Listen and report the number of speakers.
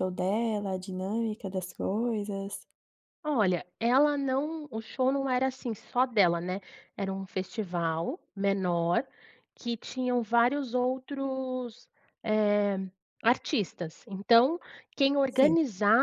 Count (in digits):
2